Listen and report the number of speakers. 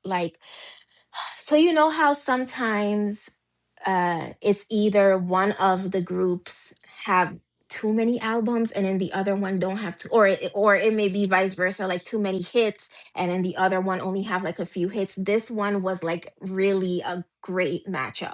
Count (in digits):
1